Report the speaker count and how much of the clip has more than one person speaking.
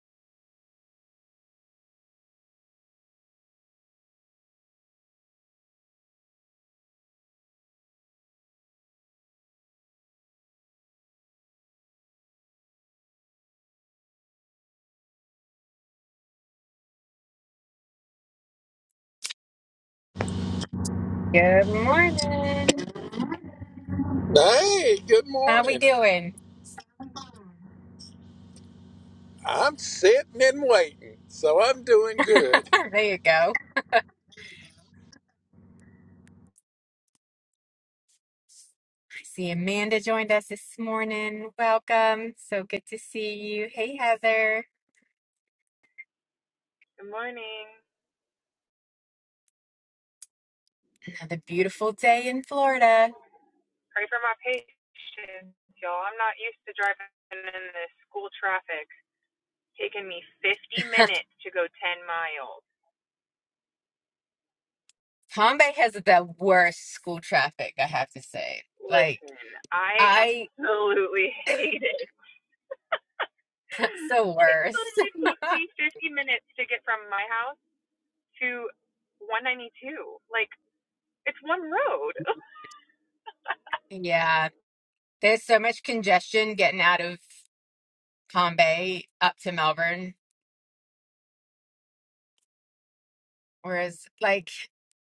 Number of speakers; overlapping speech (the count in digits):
3, about 2%